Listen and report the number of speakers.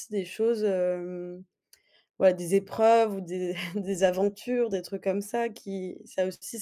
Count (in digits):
1